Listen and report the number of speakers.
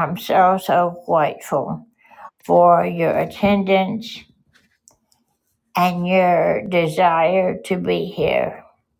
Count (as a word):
one